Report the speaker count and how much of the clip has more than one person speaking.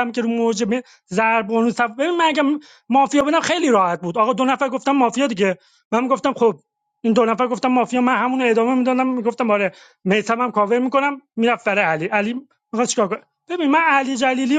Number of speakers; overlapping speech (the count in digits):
1, no overlap